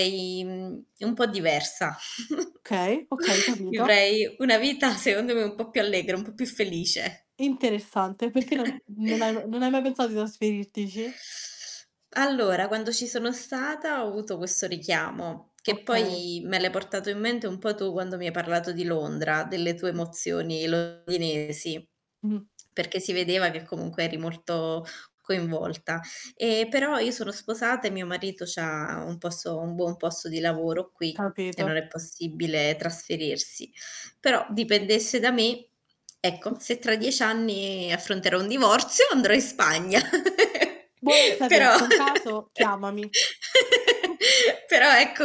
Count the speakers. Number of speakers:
2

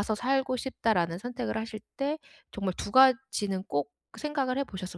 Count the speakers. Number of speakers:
1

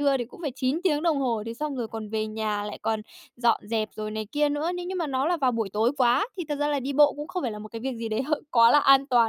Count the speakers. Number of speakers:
1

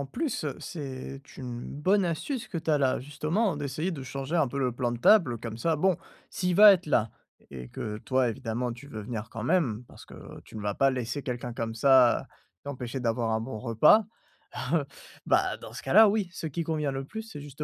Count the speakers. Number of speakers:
1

